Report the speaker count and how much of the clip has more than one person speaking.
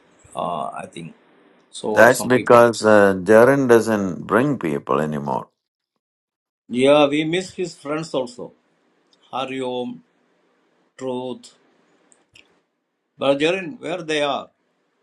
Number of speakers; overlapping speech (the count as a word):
two, about 4%